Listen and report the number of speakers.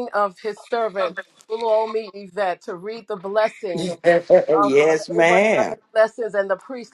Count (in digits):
2